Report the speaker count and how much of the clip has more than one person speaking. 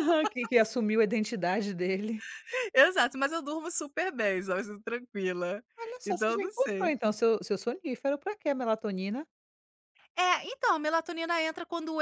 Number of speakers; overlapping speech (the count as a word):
two, about 7%